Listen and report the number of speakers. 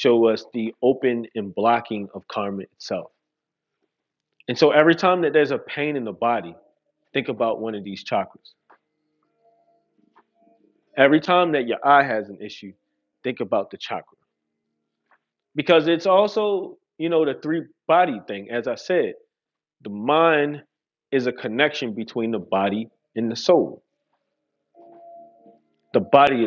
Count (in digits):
1